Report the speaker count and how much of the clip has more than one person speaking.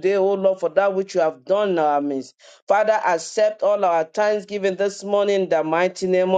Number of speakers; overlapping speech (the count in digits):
1, no overlap